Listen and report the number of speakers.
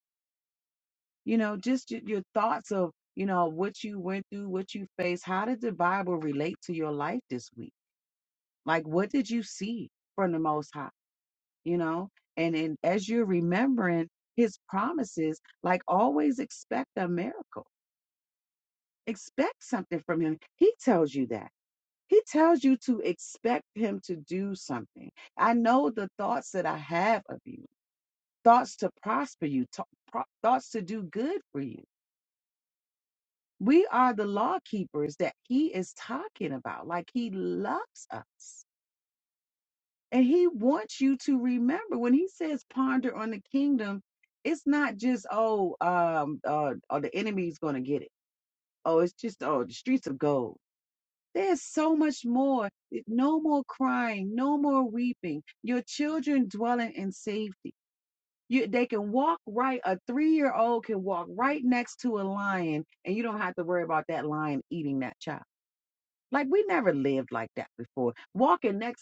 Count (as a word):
one